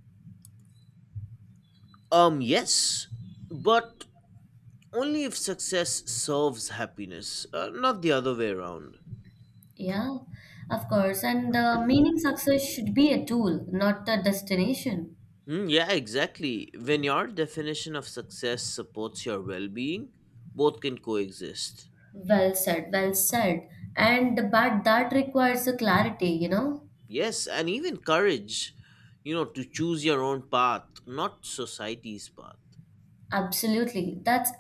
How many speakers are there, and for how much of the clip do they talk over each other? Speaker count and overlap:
2, no overlap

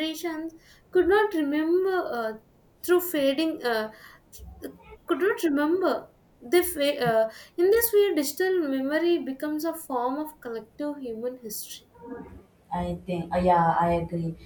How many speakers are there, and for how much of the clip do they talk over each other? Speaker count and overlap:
2, no overlap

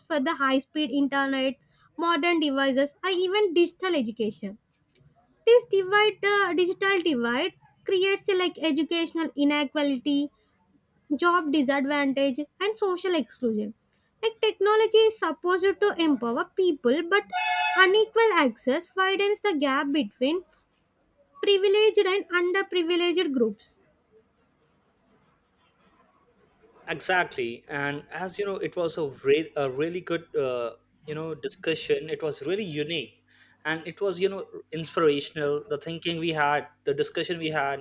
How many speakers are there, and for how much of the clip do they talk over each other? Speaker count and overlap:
2, no overlap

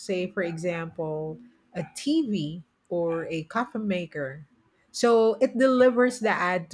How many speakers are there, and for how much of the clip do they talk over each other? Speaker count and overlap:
1, no overlap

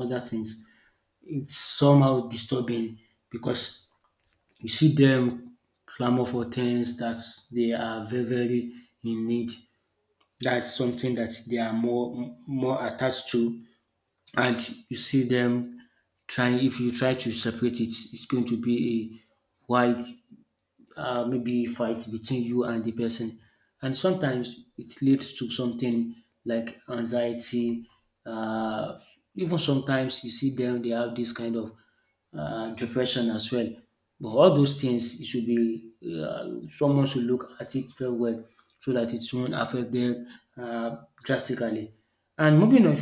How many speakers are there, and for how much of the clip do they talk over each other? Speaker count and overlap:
1, no overlap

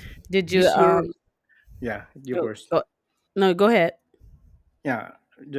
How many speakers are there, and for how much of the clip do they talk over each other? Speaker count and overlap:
2, about 17%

